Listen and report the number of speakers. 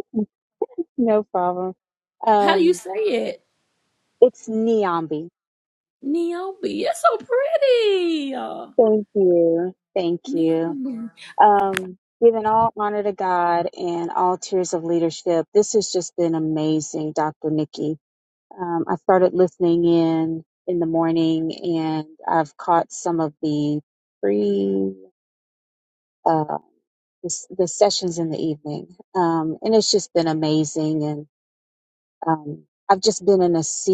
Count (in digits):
2